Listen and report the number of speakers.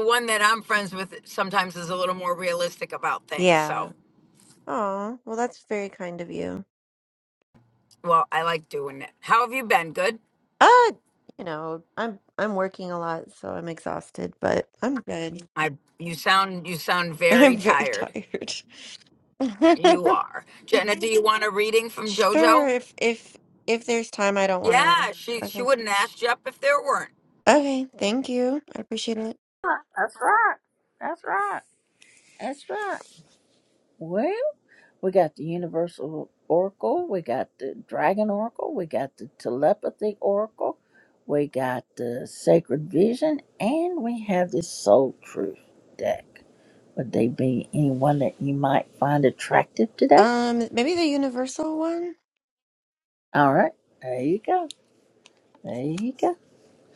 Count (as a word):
three